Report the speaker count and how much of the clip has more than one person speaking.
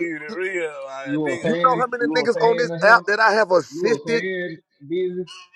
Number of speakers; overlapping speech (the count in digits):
3, about 46%